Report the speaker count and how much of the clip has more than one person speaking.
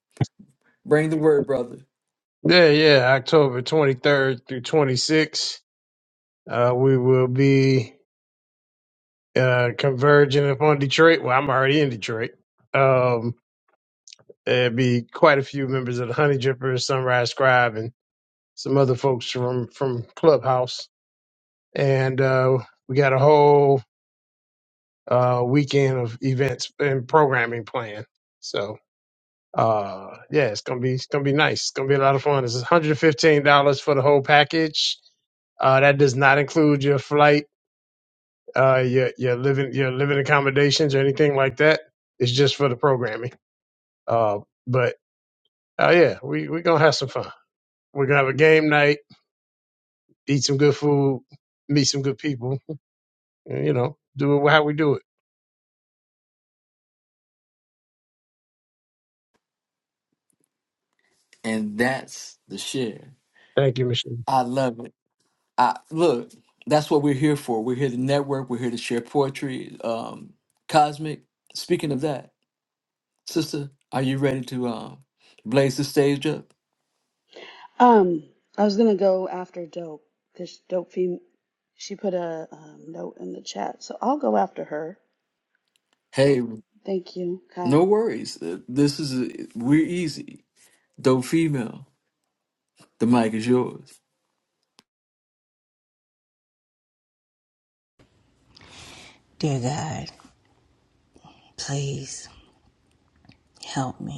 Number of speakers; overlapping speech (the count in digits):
4, under 1%